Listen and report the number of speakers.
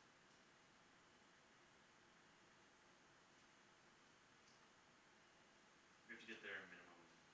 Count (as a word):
one